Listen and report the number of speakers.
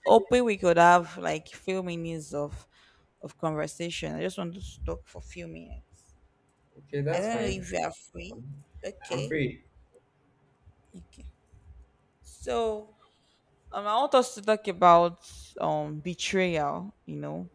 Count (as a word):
two